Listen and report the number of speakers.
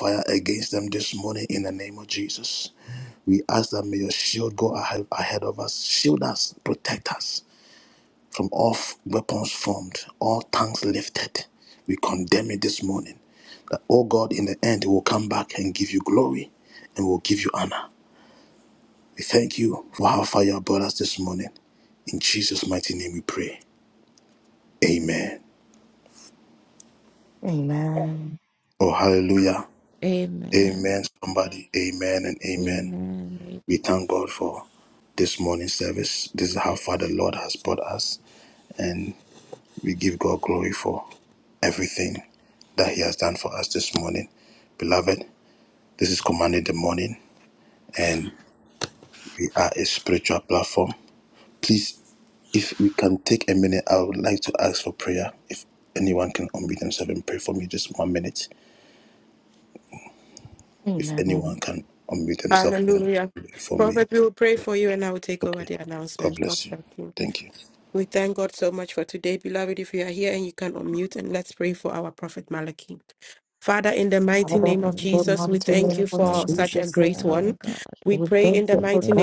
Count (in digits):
4